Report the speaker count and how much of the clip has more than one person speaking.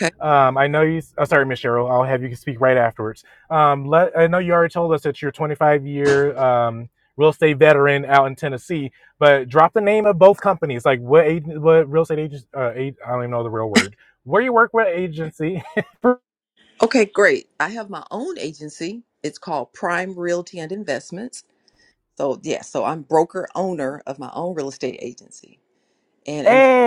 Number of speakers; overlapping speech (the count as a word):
two, about 1%